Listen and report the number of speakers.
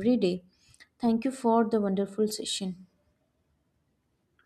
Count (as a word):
one